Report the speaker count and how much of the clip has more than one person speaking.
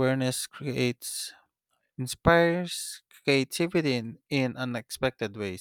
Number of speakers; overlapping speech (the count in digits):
1, no overlap